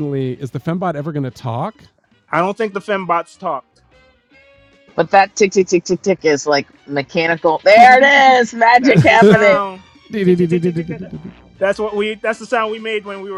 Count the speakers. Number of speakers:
three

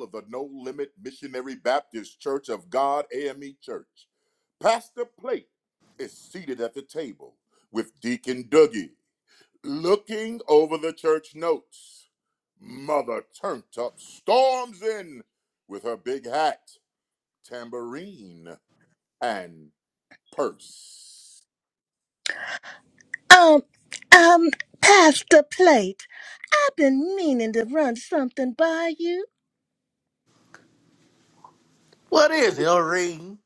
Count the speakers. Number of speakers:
three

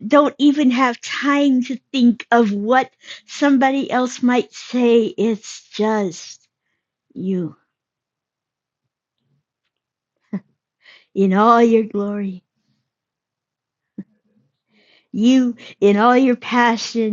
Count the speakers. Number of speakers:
one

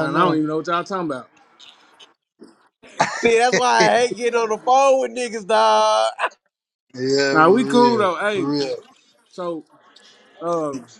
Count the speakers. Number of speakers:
three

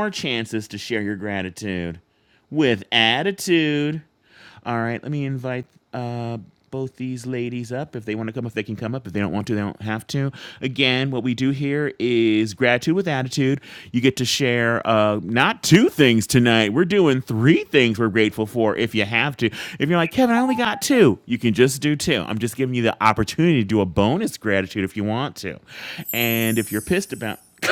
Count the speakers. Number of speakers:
one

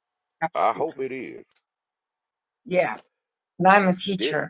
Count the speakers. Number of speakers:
two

